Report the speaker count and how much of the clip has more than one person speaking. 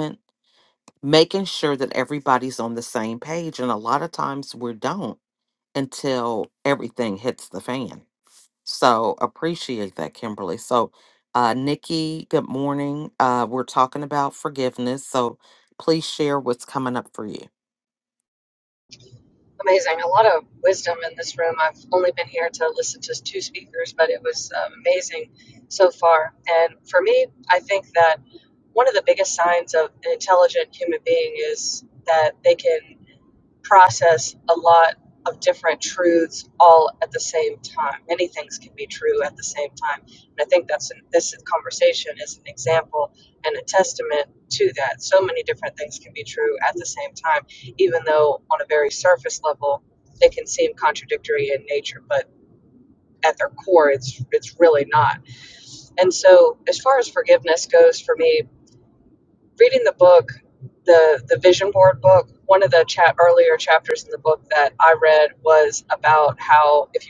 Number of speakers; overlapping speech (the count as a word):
two, no overlap